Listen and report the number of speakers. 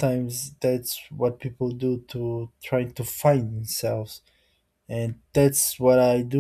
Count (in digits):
1